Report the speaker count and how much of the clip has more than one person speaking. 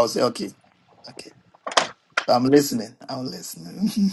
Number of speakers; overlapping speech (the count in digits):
1, no overlap